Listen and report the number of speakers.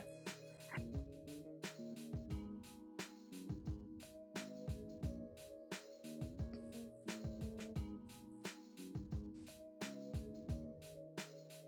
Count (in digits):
0